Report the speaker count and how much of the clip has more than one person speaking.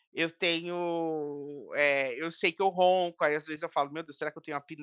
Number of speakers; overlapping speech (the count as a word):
one, no overlap